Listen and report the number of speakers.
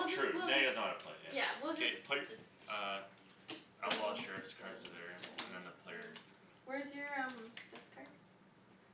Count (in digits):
2